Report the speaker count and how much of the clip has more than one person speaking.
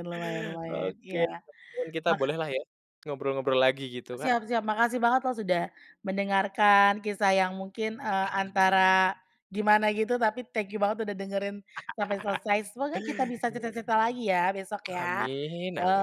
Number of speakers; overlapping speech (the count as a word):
two, about 9%